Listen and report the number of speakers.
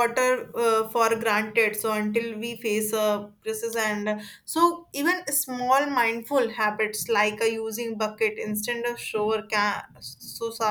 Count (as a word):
one